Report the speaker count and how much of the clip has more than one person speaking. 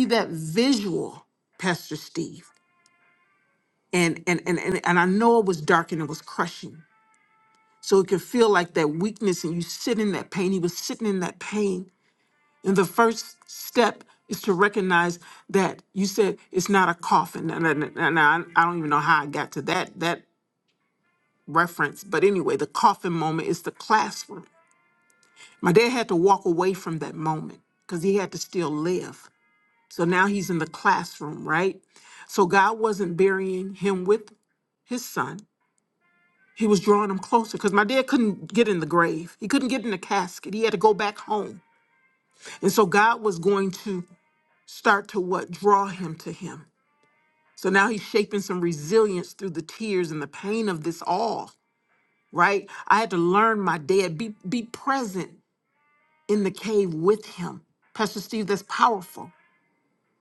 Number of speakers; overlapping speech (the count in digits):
1, no overlap